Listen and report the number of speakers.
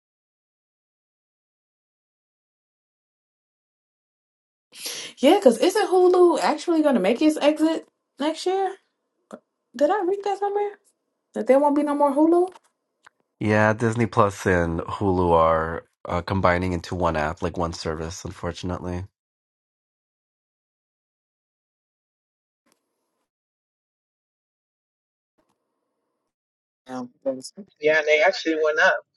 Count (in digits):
3